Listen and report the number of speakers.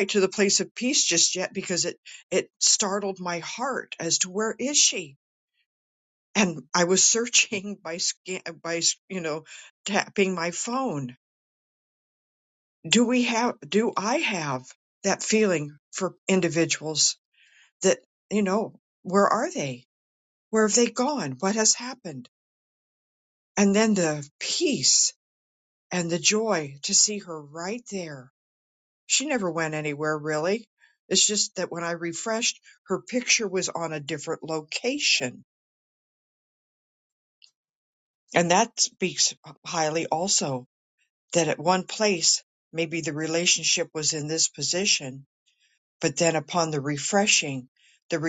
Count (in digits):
1